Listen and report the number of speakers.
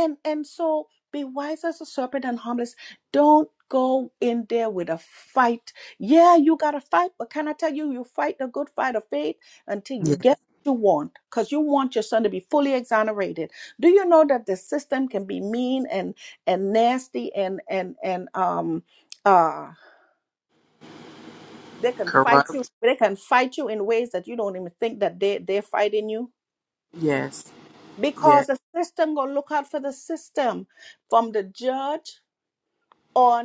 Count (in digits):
2